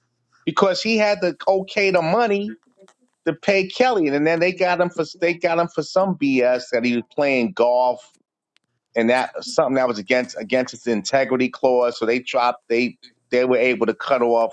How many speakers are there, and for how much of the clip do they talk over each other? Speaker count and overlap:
1, no overlap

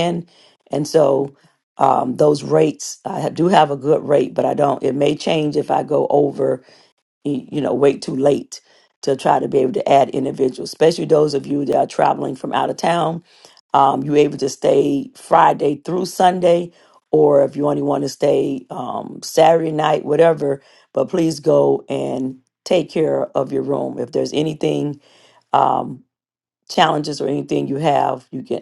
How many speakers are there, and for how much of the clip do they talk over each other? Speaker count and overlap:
1, no overlap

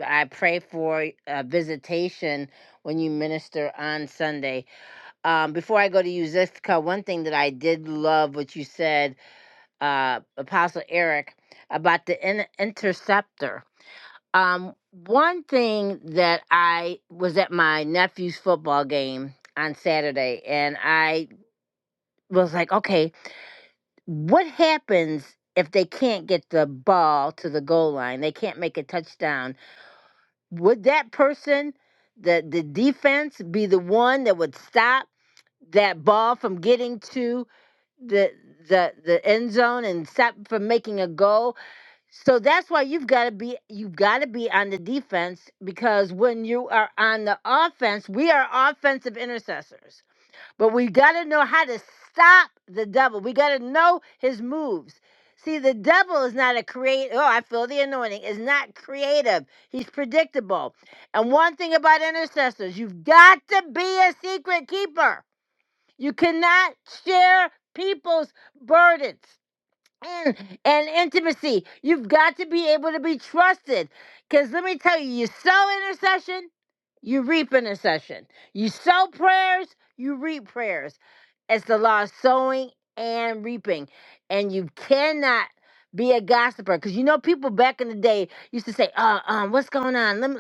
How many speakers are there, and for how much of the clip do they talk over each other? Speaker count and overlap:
1, no overlap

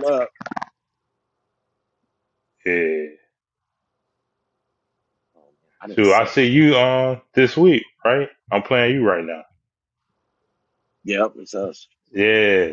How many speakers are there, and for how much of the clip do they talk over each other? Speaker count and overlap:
2, about 4%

